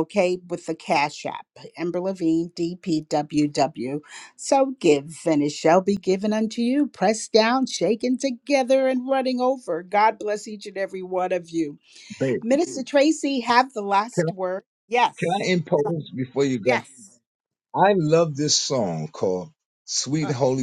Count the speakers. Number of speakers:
two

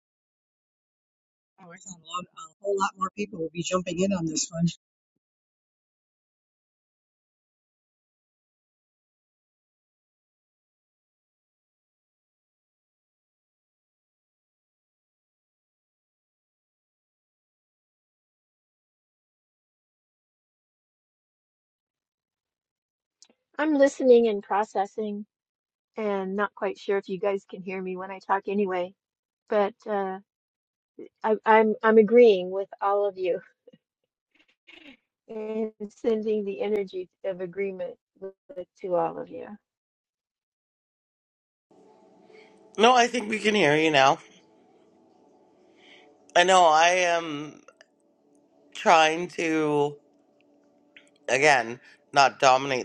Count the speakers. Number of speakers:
three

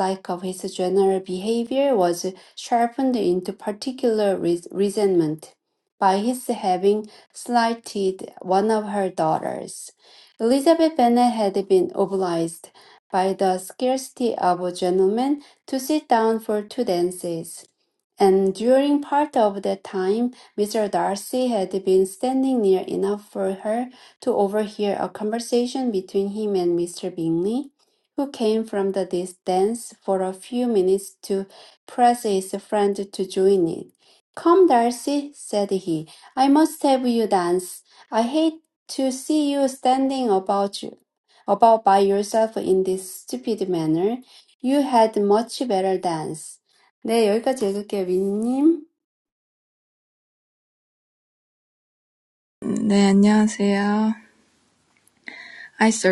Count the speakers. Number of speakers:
two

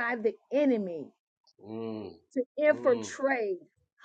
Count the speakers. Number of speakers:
two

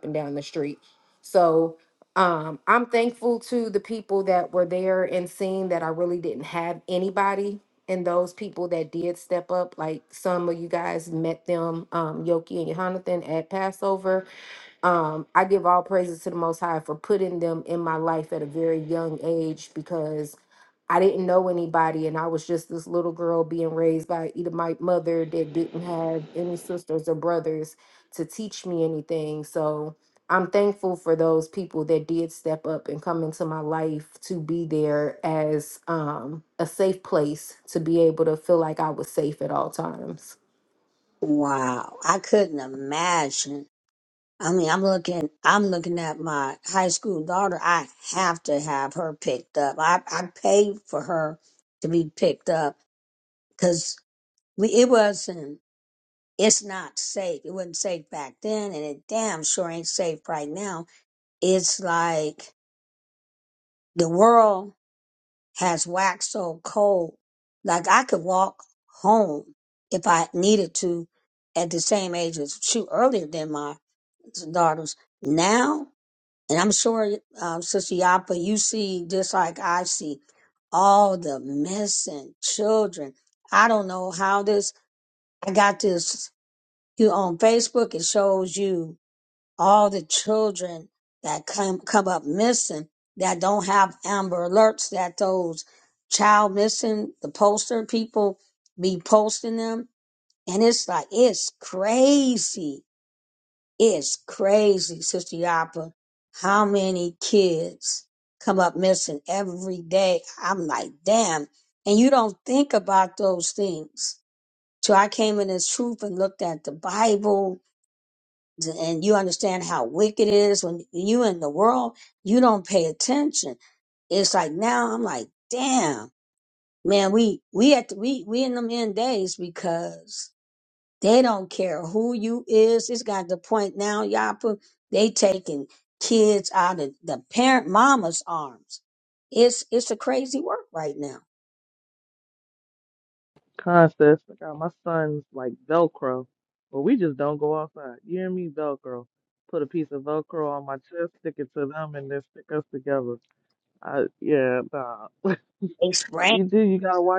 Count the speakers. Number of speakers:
three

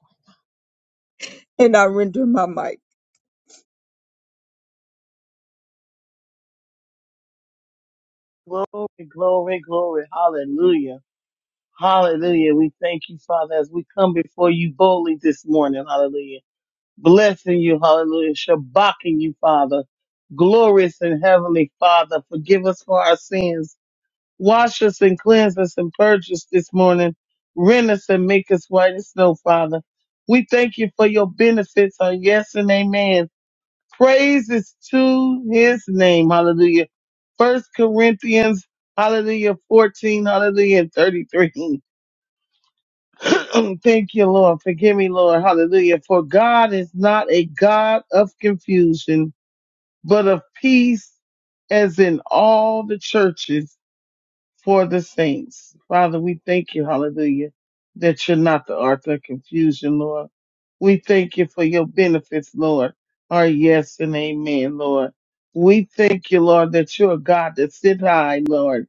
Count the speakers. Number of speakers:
two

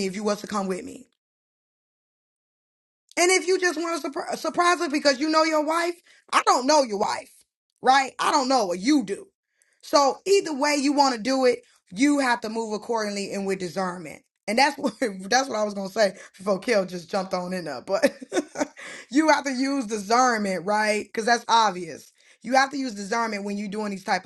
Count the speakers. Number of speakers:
one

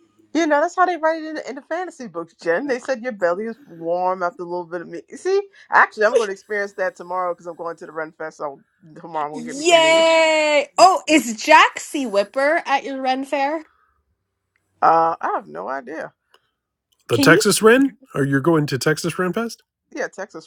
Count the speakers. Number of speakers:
three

